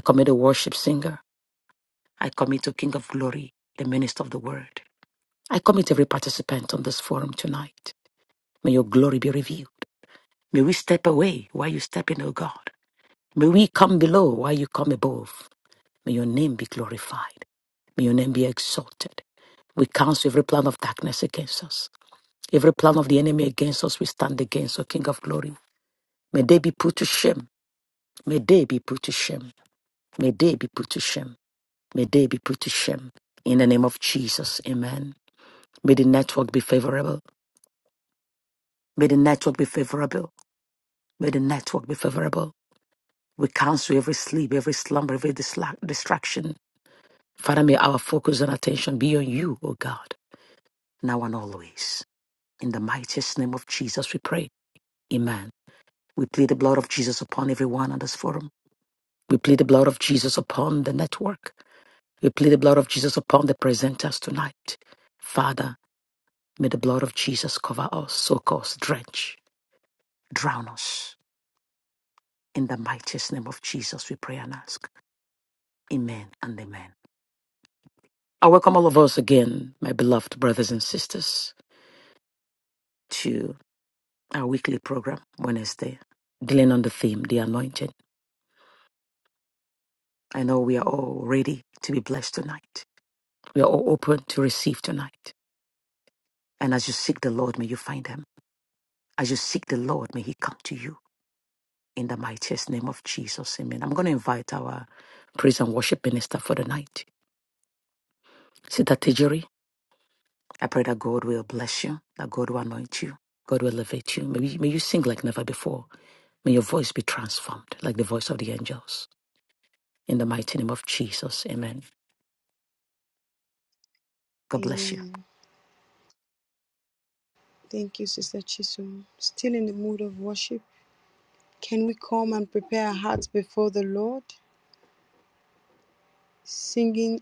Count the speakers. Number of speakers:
2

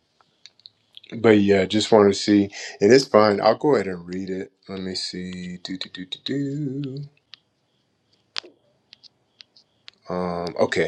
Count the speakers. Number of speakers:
1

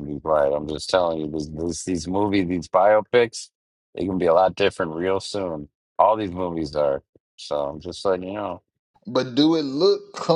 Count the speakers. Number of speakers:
2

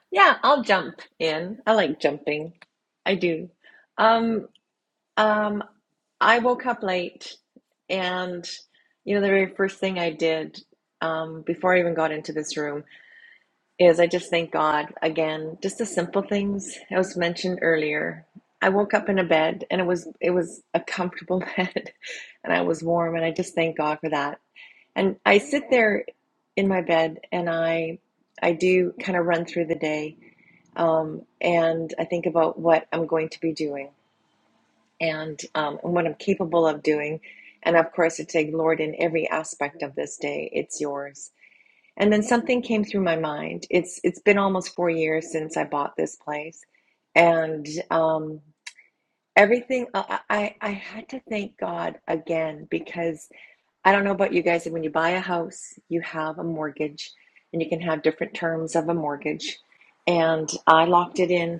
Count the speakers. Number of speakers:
1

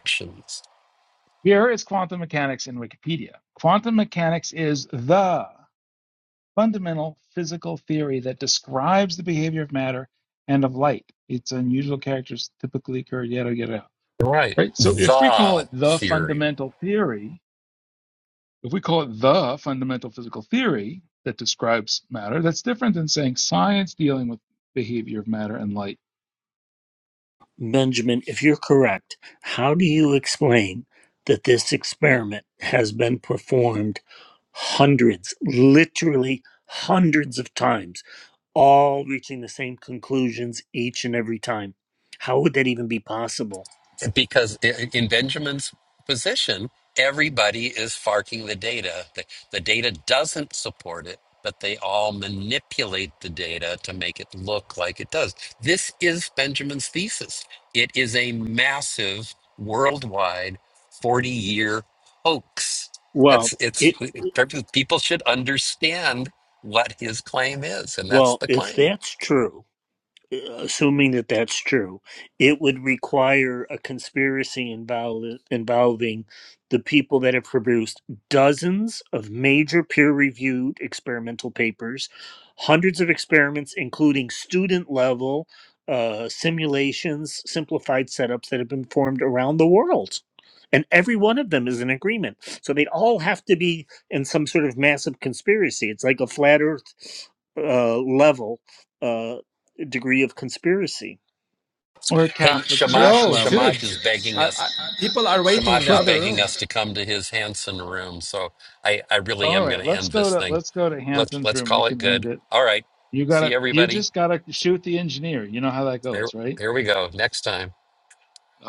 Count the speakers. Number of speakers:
4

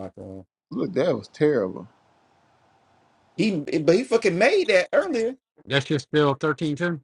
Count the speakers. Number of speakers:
3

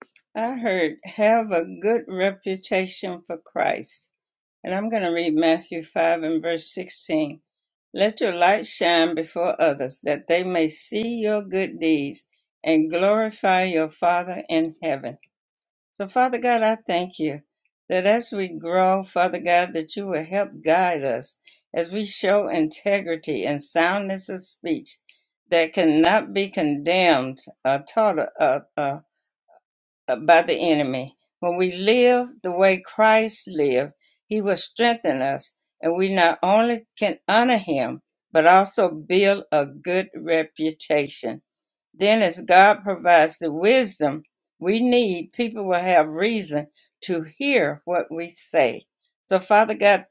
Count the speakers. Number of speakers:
1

